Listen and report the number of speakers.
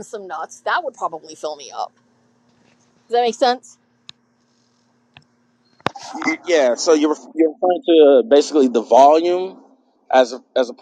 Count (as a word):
two